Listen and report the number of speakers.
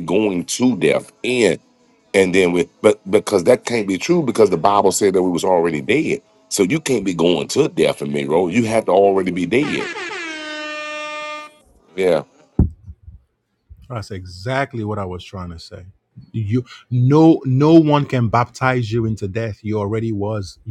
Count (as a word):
two